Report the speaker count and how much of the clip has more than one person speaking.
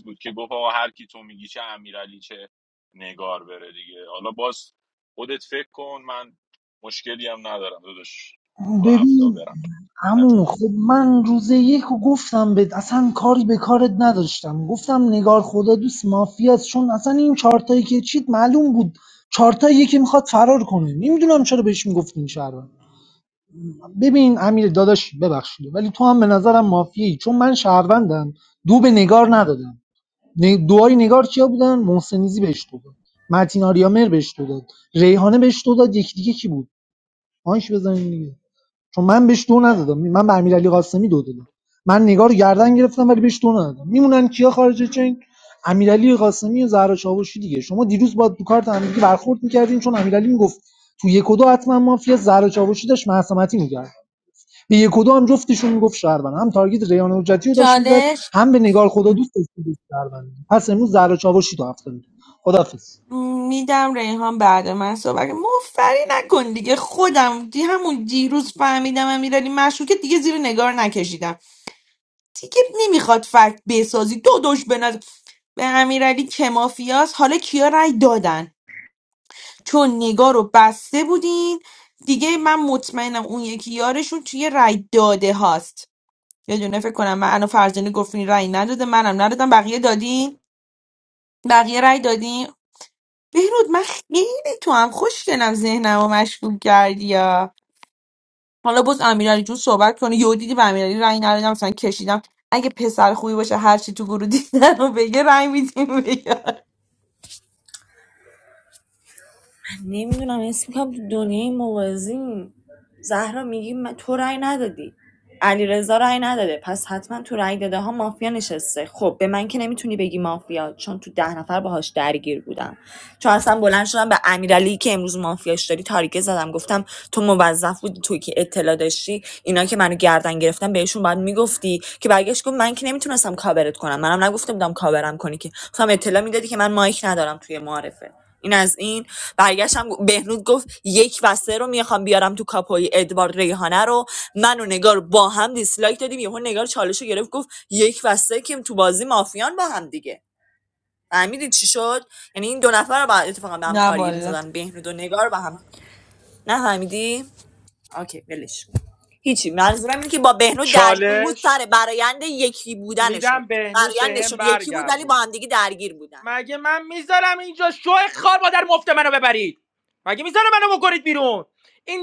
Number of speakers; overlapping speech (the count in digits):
5, about 3%